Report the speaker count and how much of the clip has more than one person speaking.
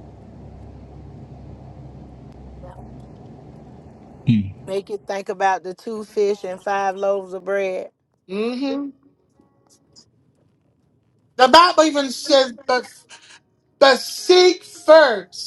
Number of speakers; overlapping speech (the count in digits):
2, no overlap